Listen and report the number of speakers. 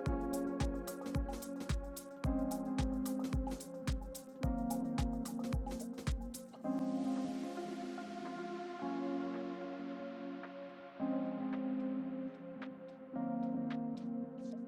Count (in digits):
0